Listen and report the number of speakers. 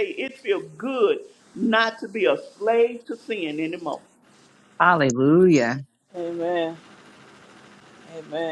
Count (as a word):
three